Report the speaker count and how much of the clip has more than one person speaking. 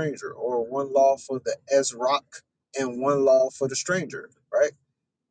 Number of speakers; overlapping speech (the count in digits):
1, no overlap